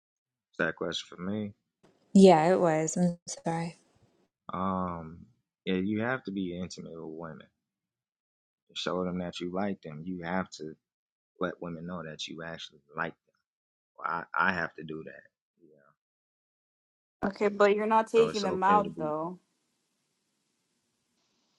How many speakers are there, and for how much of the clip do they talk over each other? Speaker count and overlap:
three, about 4%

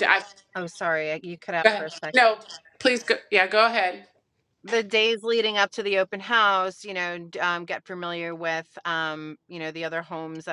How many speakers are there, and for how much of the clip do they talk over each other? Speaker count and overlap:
two, about 6%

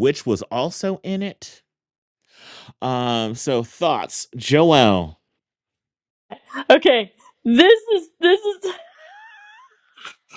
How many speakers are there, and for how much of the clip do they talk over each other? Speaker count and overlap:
two, no overlap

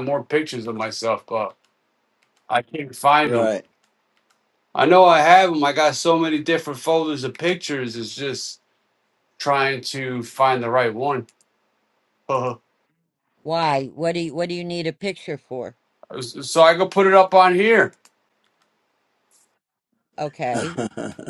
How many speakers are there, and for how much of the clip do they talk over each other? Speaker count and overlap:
three, about 2%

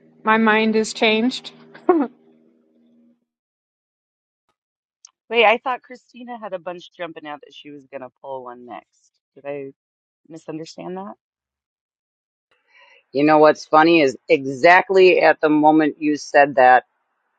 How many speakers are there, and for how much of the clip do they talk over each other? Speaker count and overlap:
three, no overlap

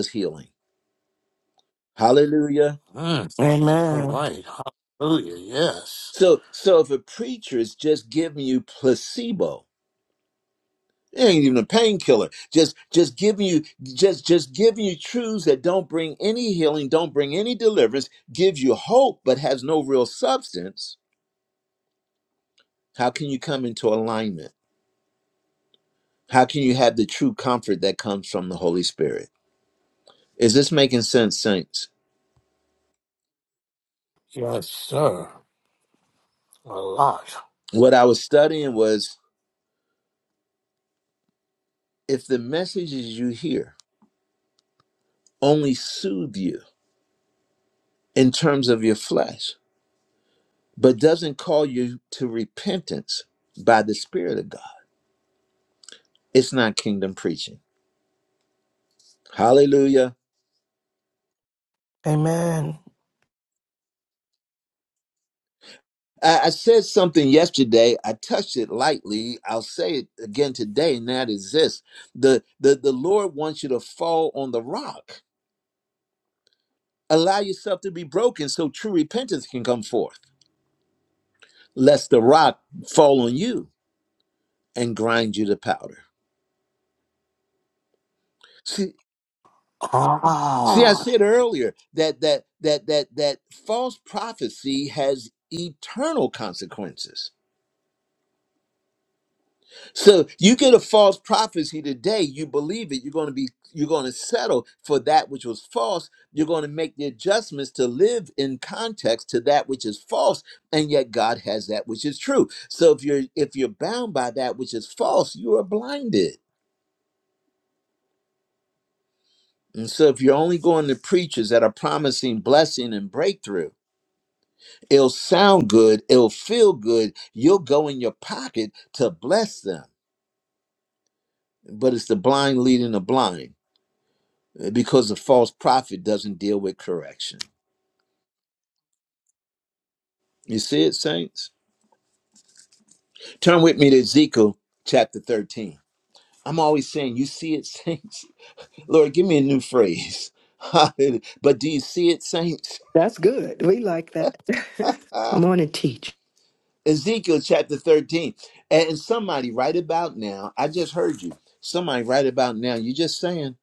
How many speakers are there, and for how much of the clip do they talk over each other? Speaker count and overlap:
four, under 1%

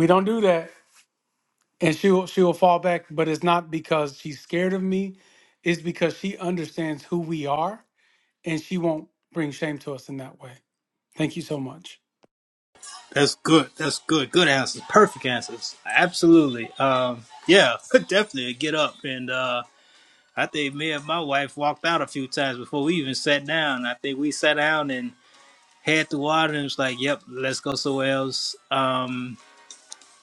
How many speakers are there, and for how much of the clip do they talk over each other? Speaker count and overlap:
two, no overlap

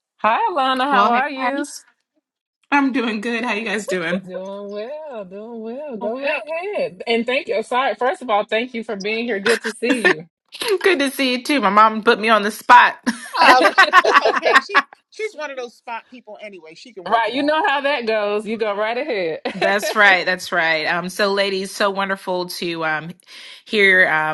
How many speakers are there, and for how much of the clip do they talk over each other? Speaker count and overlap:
three, about 8%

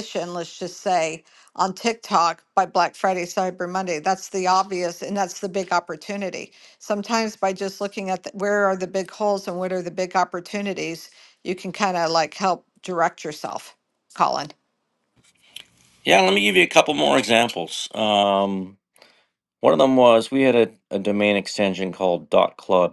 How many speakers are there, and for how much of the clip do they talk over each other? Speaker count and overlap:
two, no overlap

